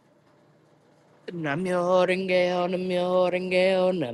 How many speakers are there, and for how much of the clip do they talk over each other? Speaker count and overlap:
one, no overlap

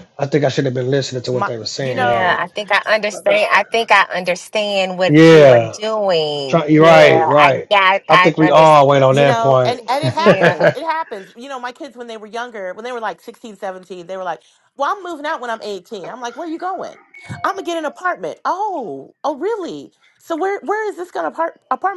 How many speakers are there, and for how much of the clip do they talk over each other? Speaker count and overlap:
three, about 20%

